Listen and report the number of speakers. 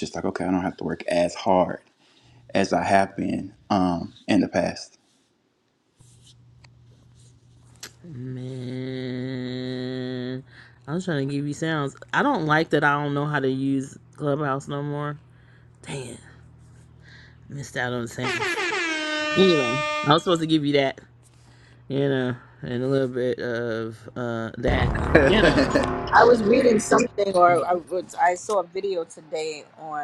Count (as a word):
three